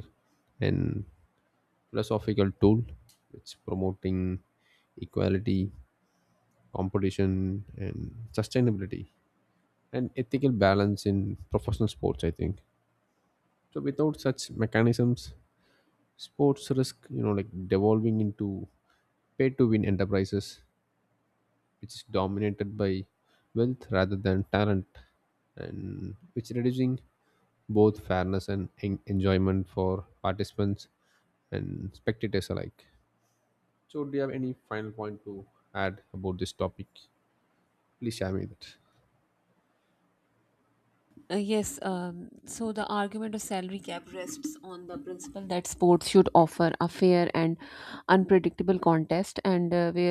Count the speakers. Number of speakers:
2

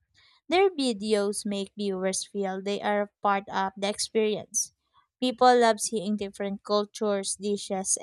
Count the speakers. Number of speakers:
1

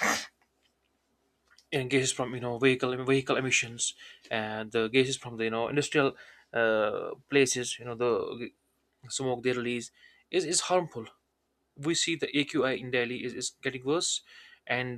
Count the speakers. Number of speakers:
1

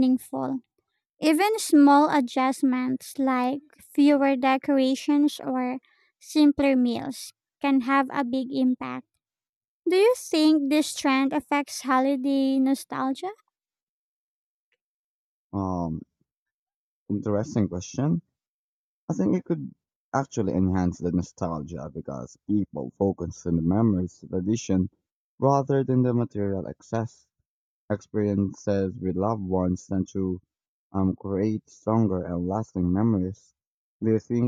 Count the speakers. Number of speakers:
2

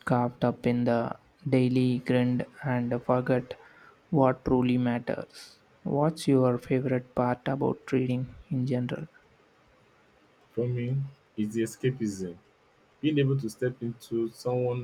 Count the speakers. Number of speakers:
2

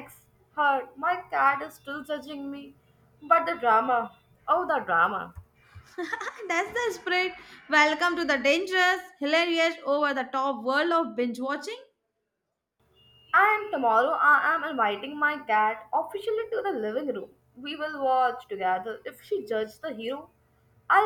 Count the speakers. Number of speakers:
2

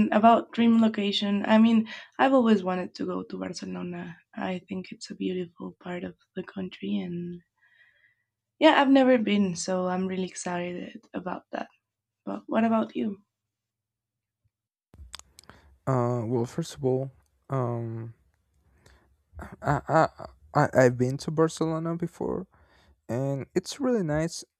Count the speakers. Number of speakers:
2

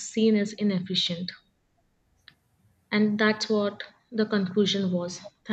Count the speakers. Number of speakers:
1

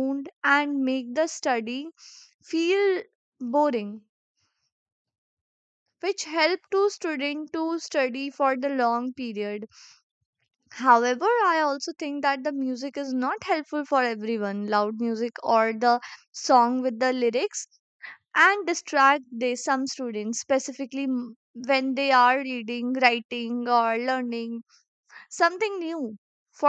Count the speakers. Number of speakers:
1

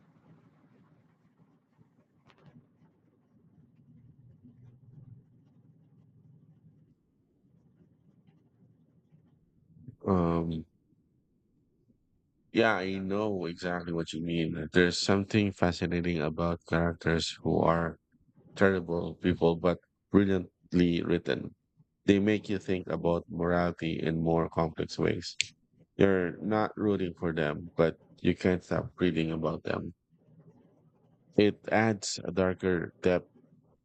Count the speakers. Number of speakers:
1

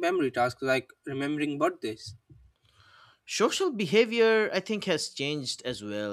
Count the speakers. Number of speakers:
2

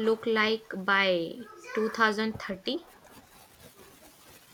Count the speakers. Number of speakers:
1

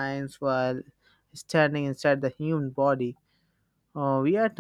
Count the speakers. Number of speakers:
1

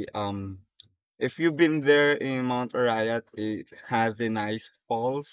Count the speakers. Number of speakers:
1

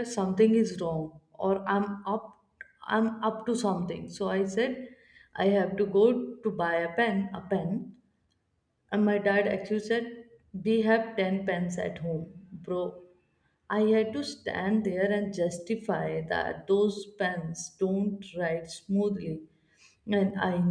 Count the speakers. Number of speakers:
1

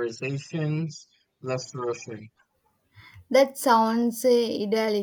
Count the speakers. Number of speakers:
2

